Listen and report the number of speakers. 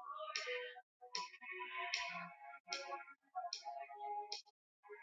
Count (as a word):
zero